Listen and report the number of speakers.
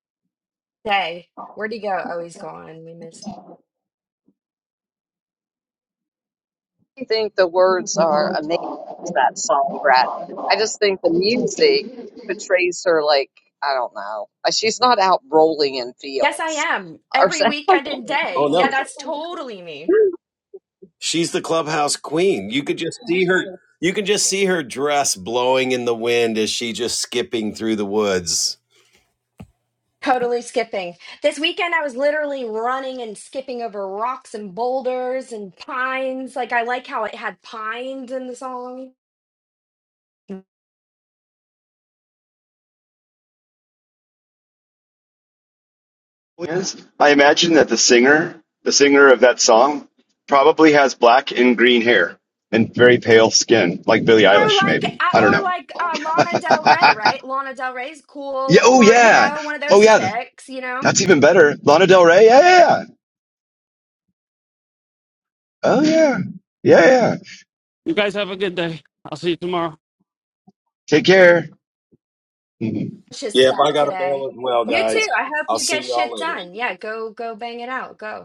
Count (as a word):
five